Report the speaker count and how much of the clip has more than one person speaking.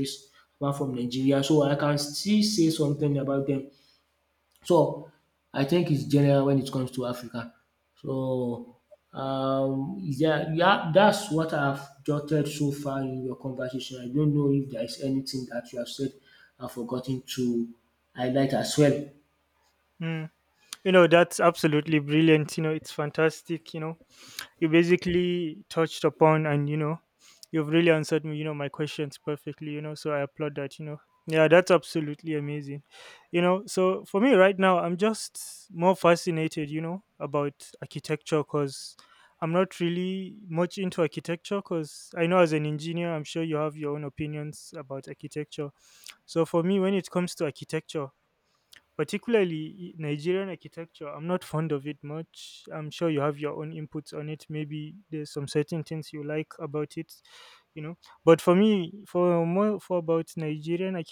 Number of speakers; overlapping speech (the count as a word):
two, no overlap